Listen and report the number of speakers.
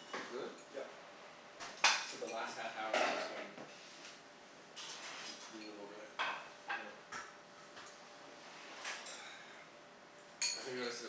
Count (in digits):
2